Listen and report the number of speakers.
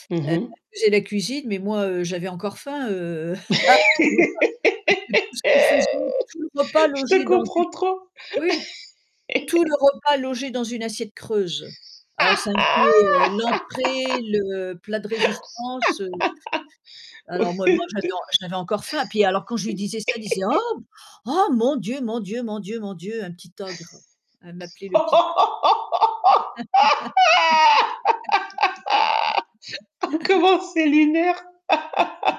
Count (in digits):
2